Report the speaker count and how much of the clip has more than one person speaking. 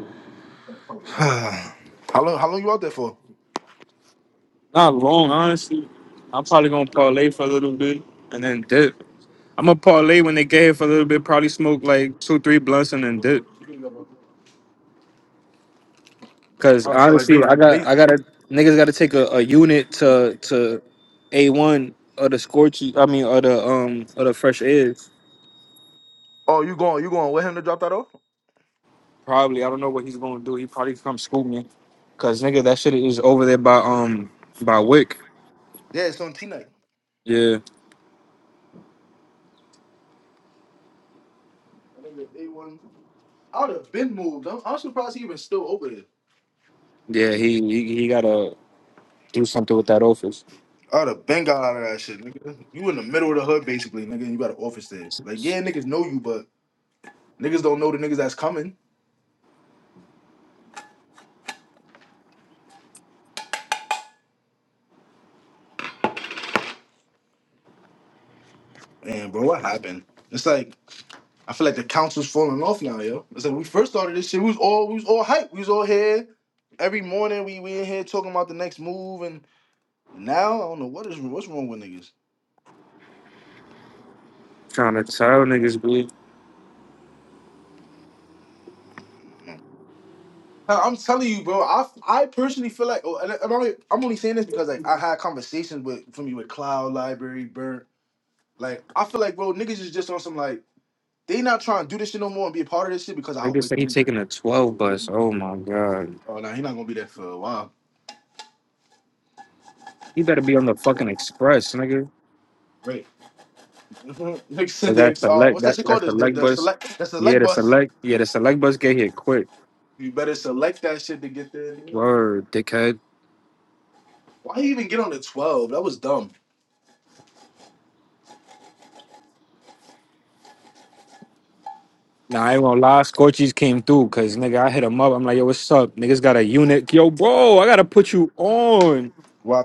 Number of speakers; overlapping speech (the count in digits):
2, about 3%